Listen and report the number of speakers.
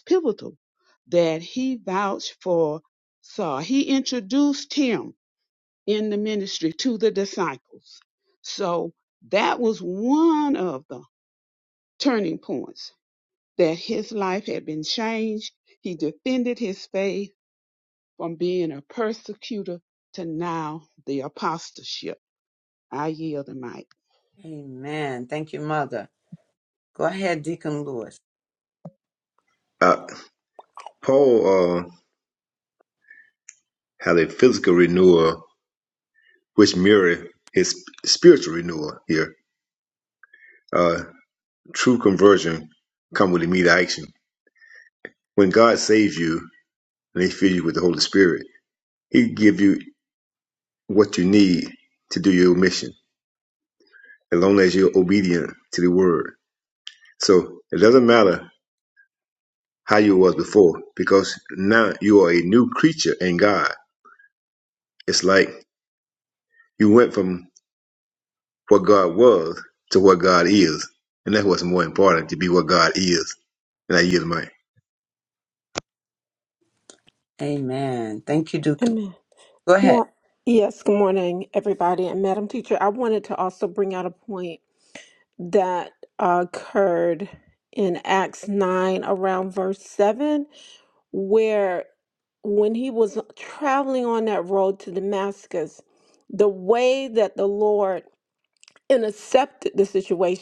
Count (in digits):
4